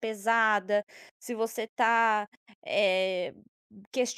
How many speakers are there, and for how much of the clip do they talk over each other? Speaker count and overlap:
1, no overlap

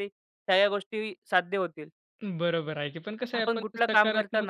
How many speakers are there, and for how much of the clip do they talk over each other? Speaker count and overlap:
2, about 25%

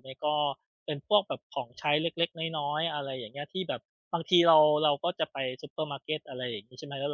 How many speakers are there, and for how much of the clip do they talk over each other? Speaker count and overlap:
1, no overlap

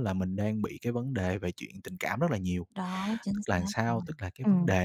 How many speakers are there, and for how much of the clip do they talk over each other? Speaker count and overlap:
2, about 20%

